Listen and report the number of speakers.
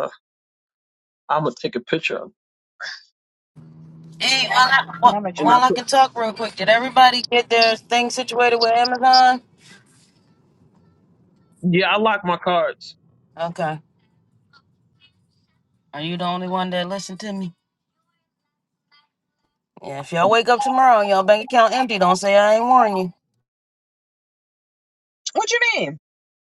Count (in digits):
3